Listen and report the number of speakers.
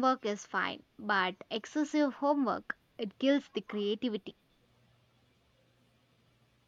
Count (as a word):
one